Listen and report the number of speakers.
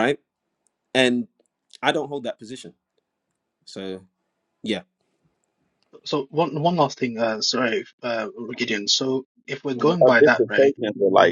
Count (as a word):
three